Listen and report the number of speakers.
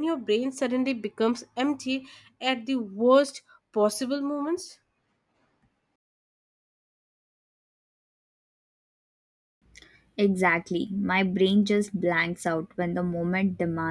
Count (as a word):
two